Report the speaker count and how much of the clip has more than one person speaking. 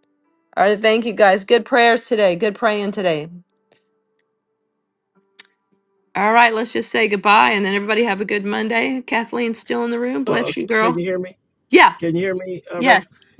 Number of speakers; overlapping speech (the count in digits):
2, about 7%